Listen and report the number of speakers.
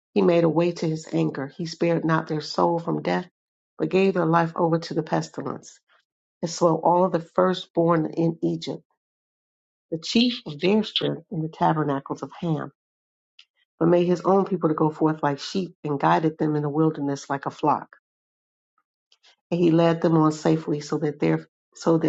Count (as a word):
one